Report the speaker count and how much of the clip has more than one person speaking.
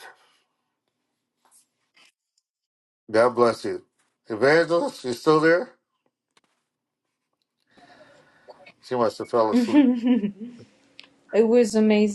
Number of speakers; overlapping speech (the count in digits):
2, about 3%